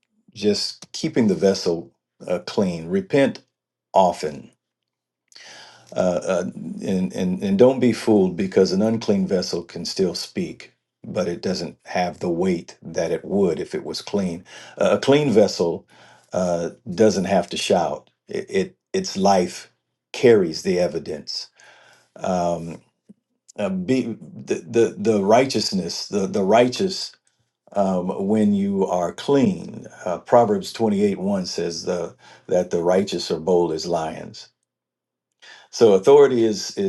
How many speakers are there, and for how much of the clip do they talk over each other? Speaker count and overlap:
one, no overlap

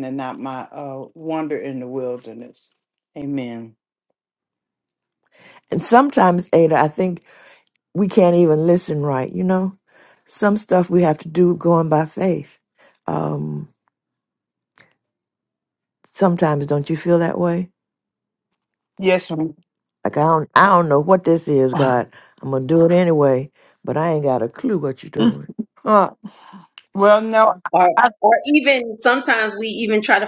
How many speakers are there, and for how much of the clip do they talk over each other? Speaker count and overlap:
three, under 1%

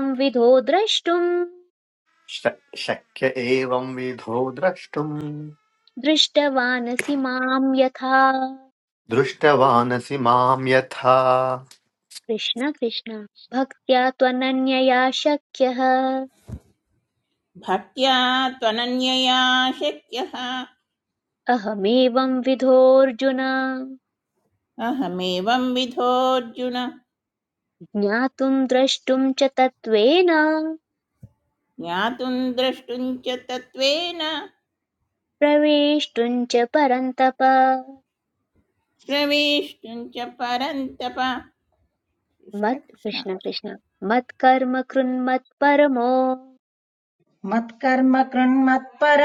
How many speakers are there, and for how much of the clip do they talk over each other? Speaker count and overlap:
four, about 1%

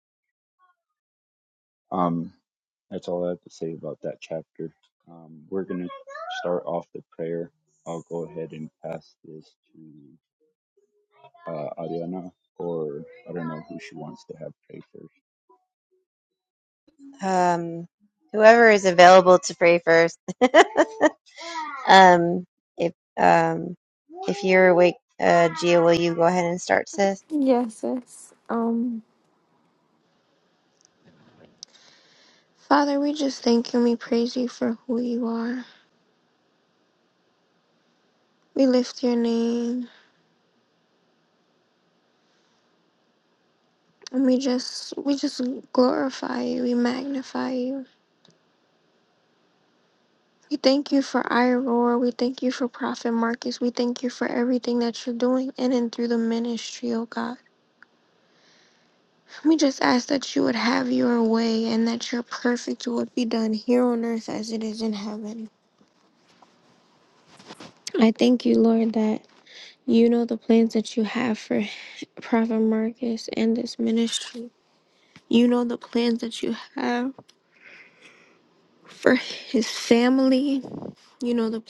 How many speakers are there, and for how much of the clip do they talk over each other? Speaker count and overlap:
three, no overlap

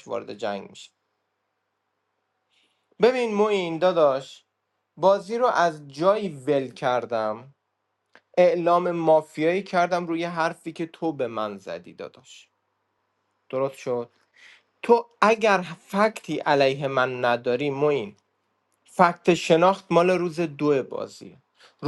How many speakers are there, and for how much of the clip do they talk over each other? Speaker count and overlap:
one, no overlap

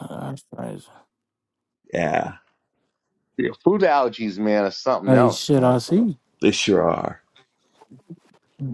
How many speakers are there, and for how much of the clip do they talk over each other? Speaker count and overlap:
three, about 8%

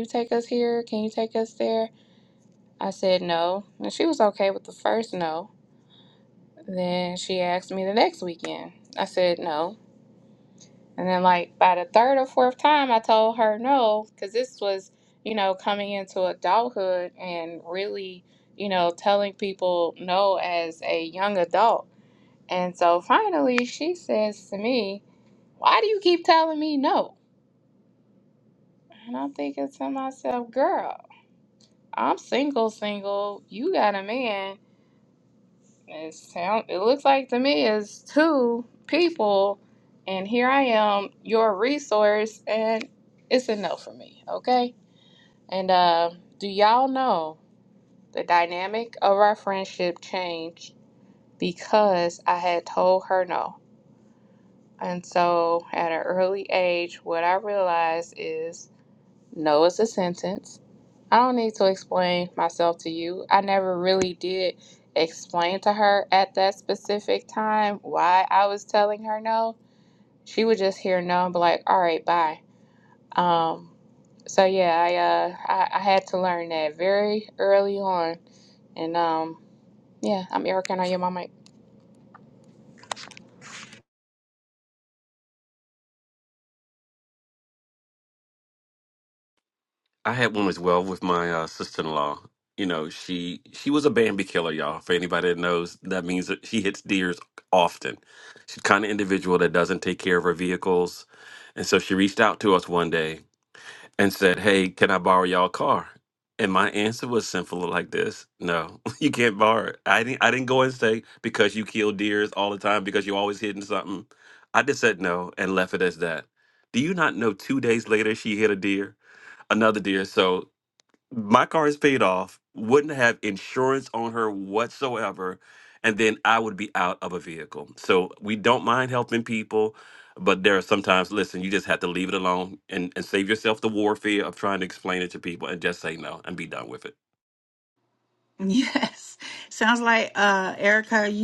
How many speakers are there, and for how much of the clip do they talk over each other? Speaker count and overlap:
three, no overlap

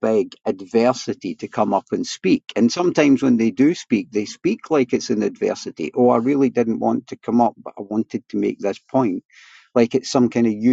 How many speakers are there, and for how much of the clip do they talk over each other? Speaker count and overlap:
one, no overlap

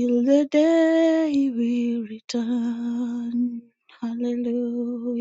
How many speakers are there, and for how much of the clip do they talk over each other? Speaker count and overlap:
one, no overlap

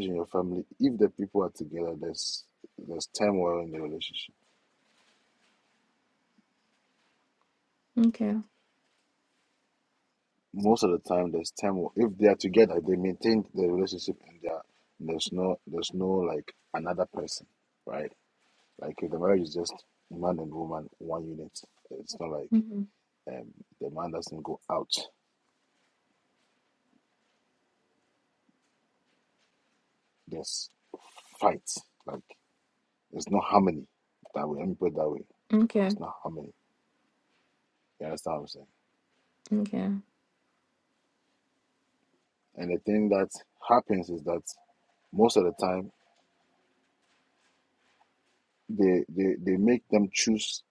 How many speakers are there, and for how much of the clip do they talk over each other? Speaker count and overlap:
two, under 1%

